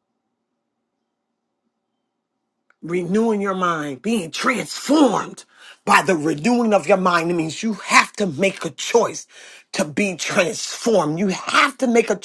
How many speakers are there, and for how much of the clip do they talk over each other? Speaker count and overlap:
one, no overlap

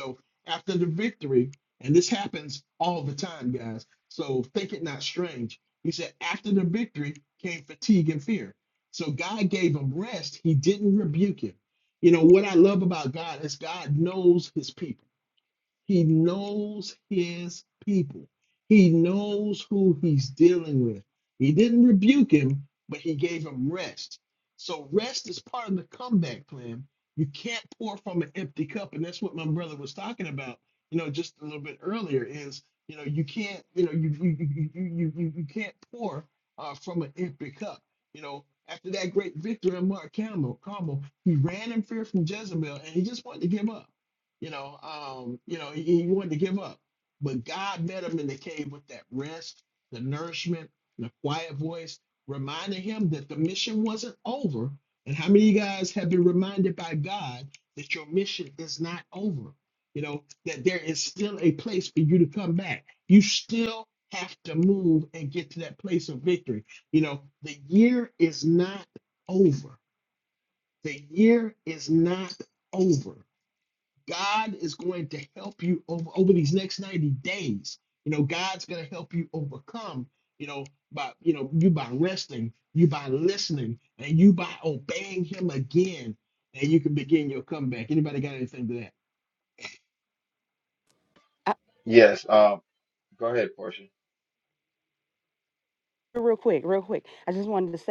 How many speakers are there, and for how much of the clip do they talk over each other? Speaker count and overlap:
three, no overlap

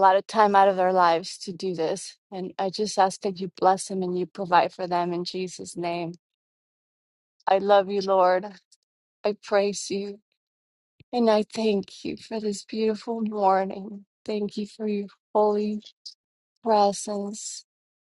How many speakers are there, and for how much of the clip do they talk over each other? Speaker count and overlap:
one, no overlap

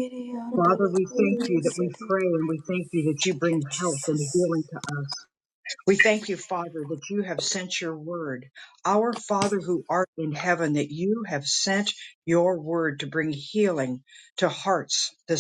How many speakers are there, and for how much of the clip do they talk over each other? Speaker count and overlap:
two, about 14%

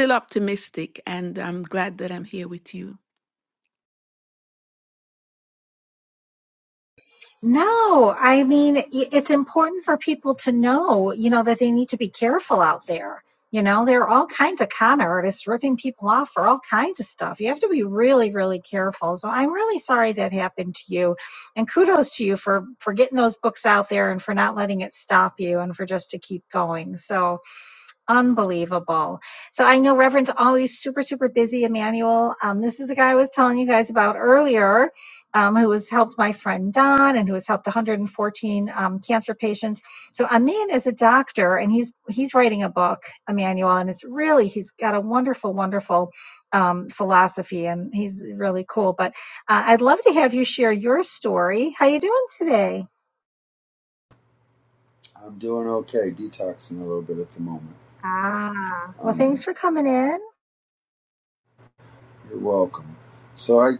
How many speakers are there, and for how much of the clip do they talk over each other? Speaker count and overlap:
three, about 1%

